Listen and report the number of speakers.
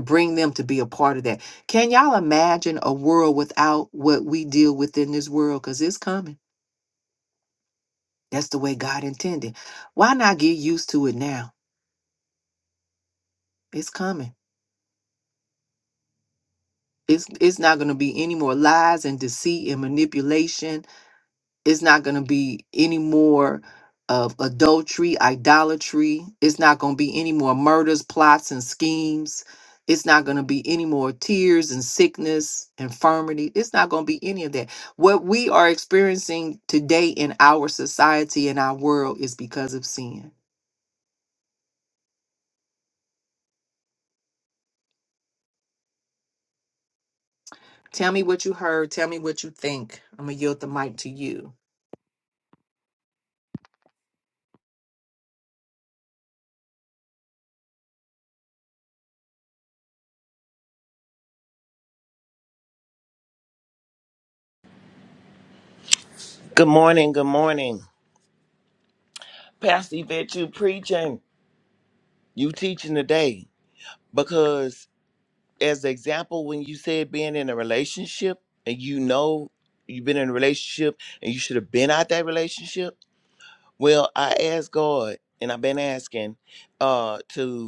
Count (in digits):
2